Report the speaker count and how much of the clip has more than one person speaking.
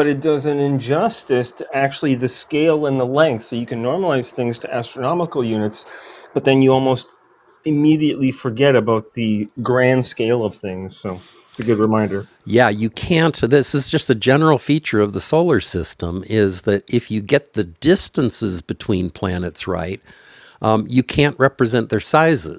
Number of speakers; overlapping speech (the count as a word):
two, no overlap